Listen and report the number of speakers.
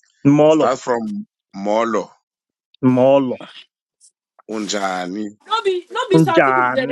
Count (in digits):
3